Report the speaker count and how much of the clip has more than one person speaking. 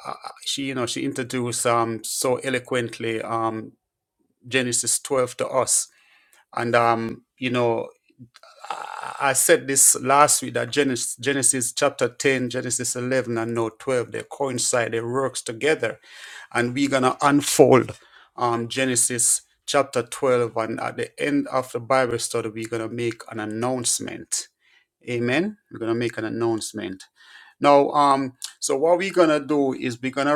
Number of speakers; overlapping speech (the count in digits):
1, no overlap